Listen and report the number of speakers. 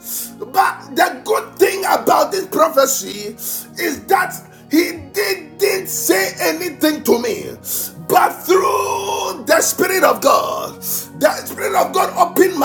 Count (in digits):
1